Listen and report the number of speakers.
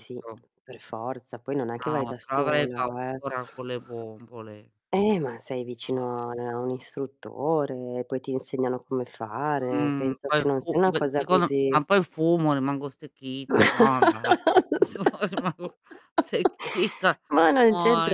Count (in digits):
2